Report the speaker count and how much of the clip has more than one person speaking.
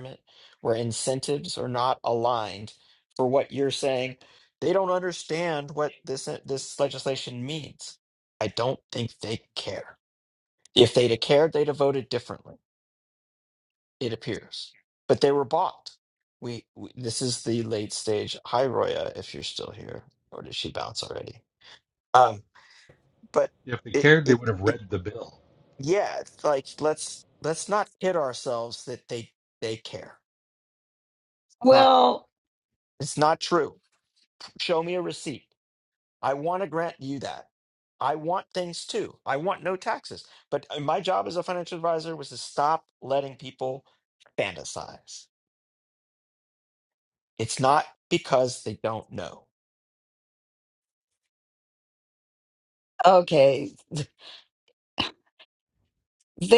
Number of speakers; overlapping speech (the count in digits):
3, about 1%